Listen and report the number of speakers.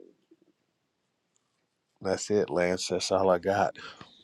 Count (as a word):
one